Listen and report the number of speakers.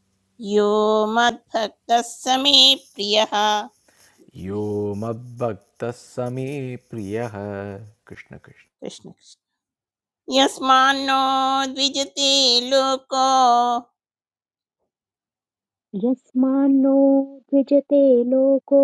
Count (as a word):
three